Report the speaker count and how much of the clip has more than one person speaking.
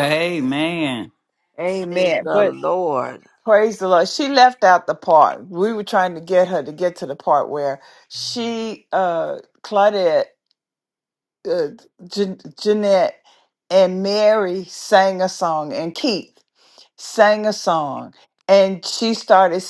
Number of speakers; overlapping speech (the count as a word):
three, about 4%